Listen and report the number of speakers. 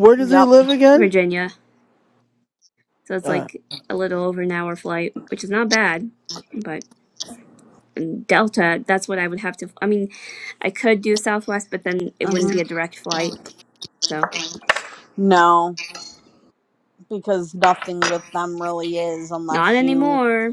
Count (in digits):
3